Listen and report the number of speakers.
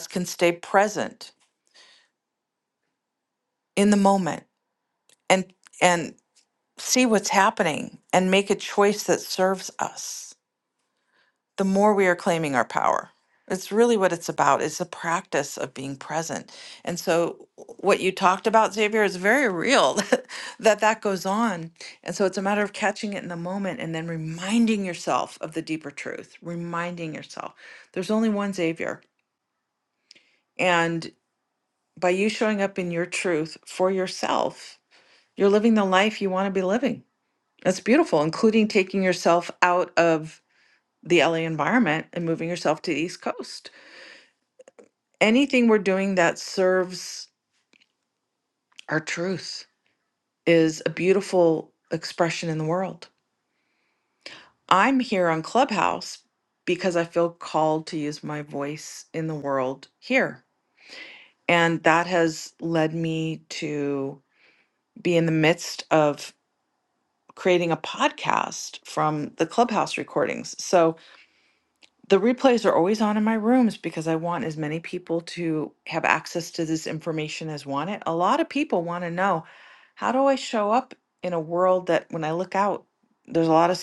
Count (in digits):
1